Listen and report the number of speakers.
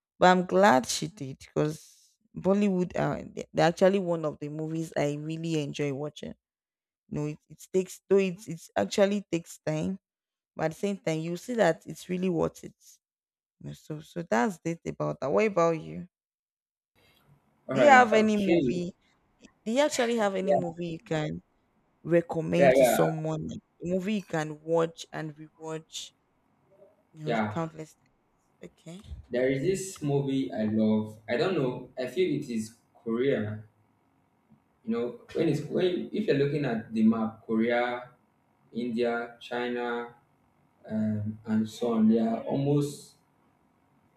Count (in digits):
2